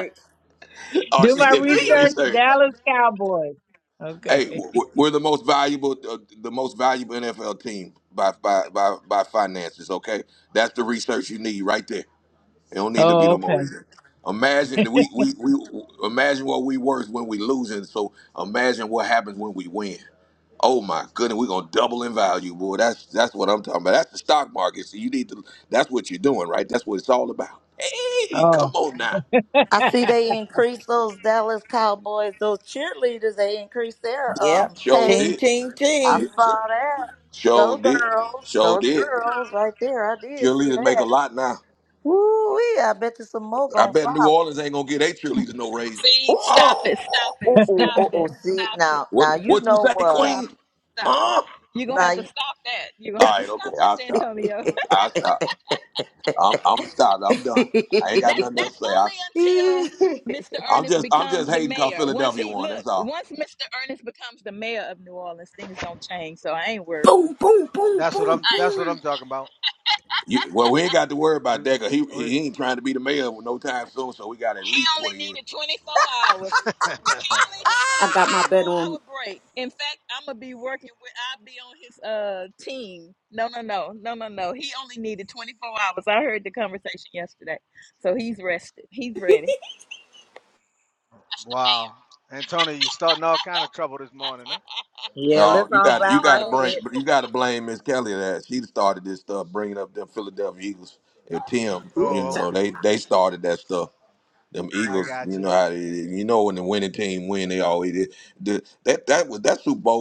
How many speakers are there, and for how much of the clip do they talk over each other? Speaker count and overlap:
seven, about 20%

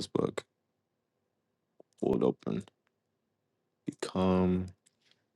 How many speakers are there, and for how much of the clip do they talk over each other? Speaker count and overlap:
one, no overlap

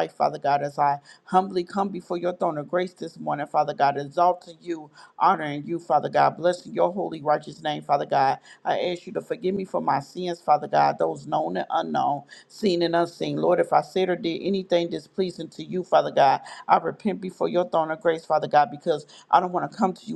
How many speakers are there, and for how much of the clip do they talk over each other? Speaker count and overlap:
one, no overlap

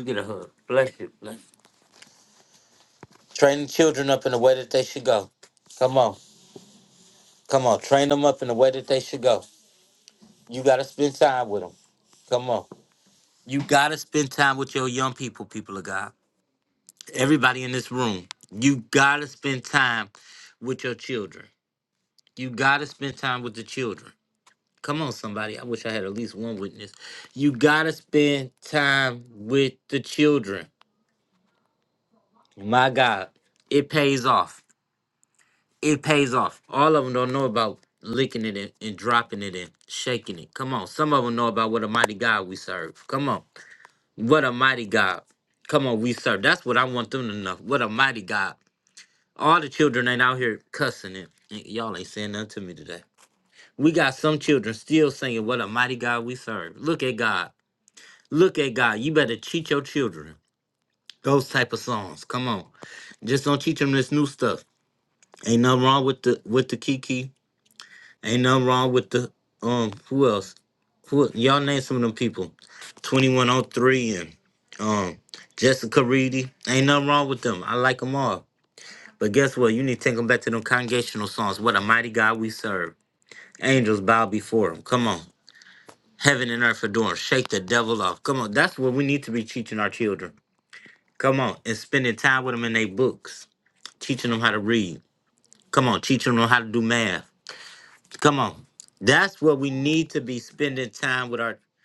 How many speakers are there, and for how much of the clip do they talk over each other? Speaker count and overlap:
one, no overlap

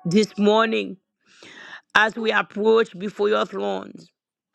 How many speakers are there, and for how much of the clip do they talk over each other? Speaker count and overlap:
one, no overlap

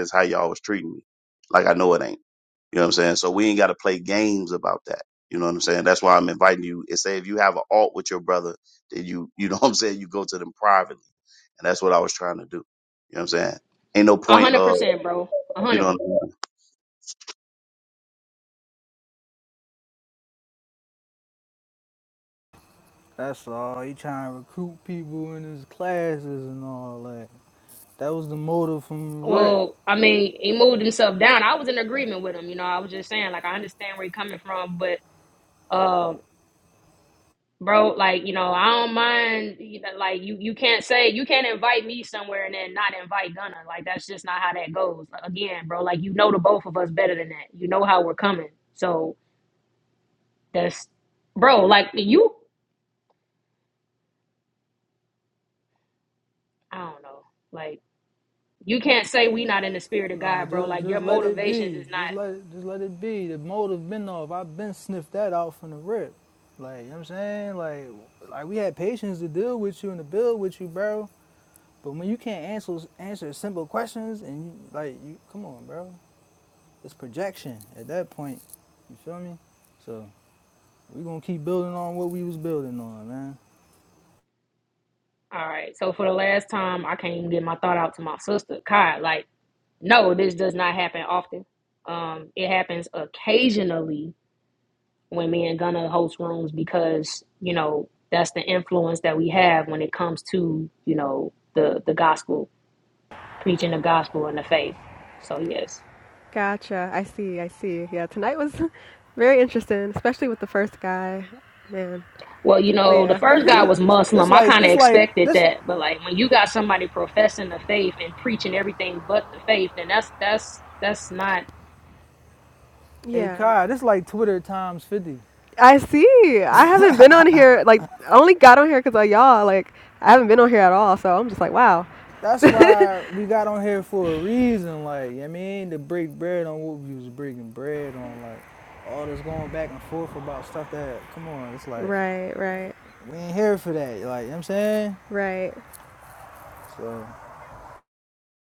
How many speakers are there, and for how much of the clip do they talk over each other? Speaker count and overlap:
four, about 4%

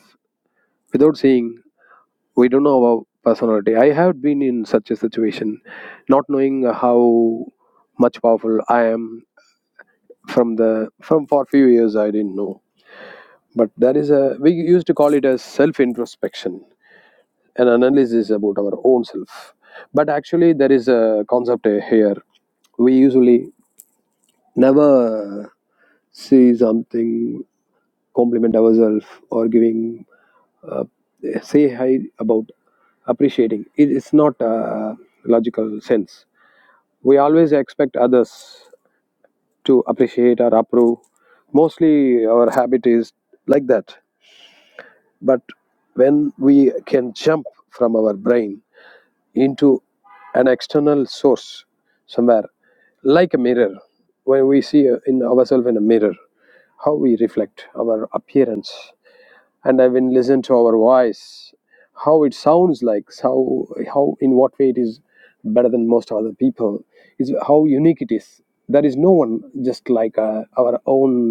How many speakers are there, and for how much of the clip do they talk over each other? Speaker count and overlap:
one, no overlap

